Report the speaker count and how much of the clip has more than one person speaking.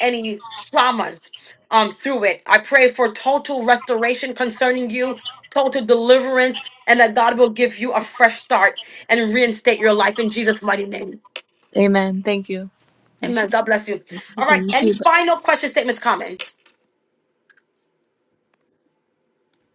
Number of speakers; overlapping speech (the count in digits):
2, about 4%